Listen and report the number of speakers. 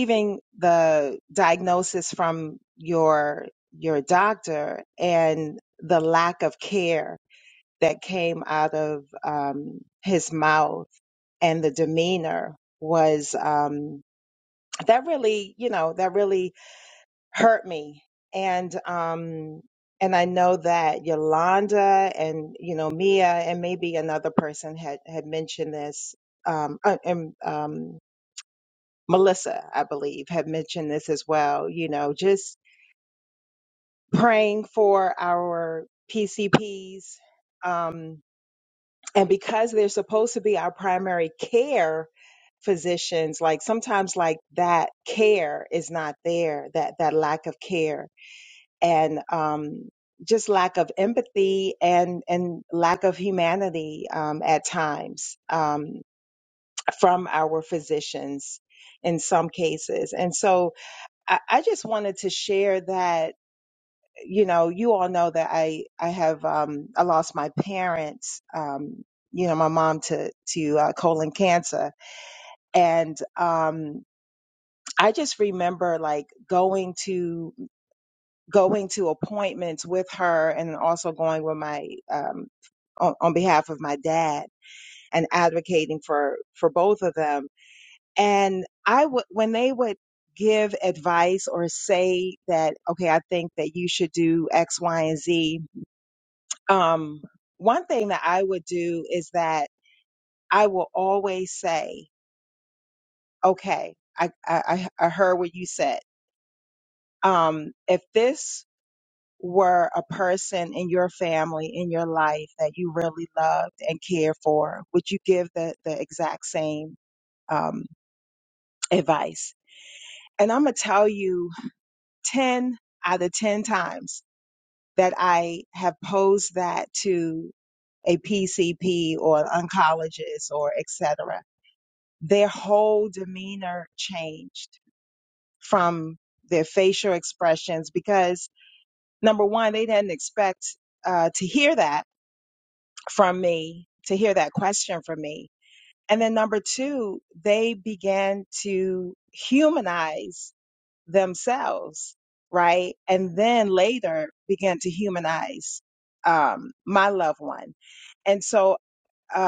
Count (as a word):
one